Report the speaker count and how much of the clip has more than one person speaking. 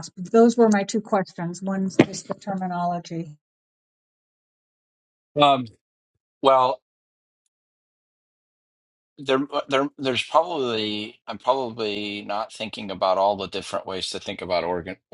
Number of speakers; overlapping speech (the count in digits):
2, no overlap